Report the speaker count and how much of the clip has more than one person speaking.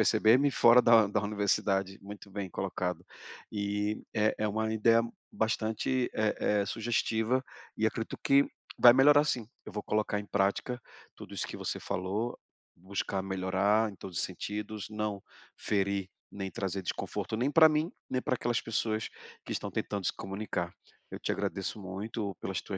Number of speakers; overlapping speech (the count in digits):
1, no overlap